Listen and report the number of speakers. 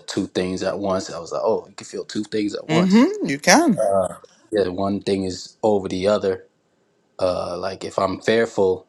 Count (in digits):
2